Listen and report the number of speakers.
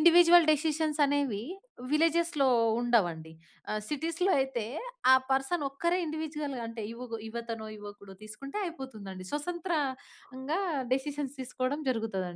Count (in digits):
1